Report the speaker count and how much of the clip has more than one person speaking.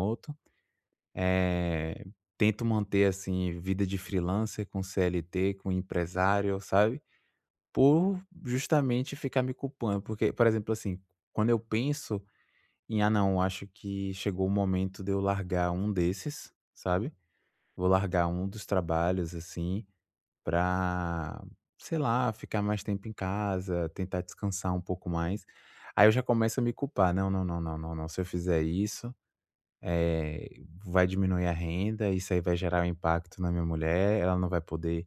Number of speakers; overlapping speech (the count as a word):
one, no overlap